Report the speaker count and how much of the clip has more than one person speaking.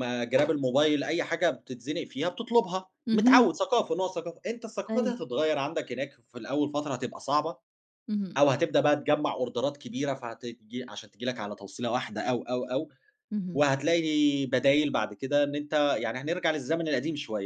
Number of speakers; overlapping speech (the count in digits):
2, about 4%